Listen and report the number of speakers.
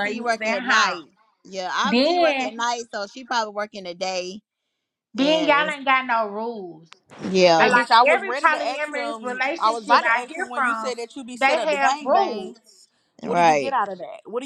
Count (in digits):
3